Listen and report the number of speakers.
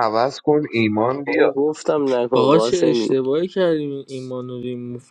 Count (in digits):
3